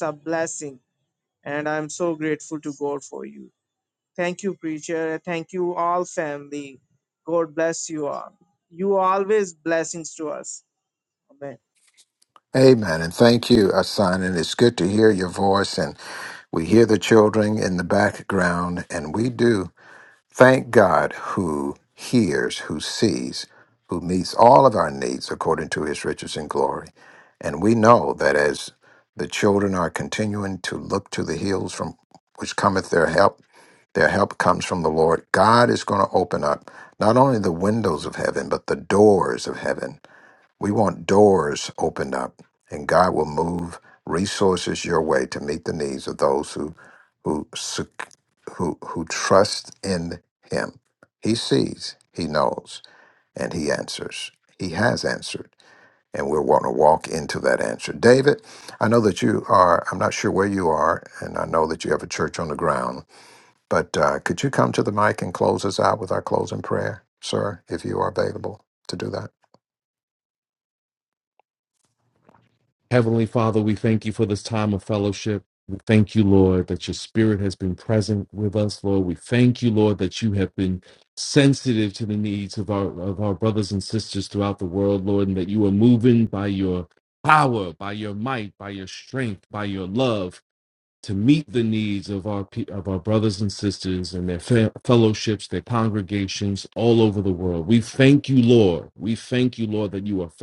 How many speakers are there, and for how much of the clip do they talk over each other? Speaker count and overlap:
3, no overlap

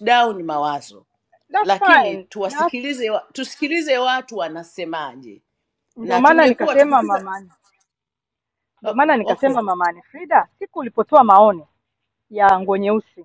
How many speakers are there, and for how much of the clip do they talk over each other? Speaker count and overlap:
2, about 23%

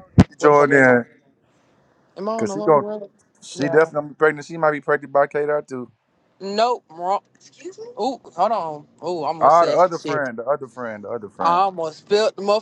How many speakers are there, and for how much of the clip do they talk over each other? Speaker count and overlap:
2, about 19%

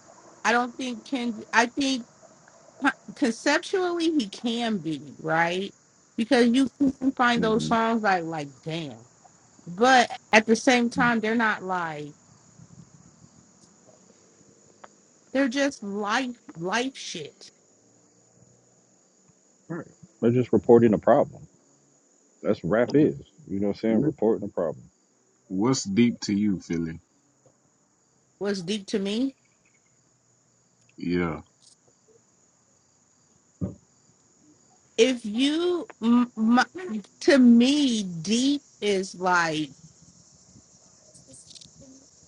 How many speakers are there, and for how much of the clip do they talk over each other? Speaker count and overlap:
3, about 2%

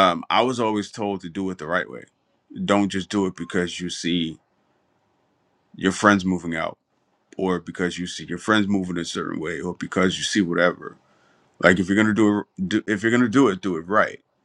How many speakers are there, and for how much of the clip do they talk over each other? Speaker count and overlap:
1, no overlap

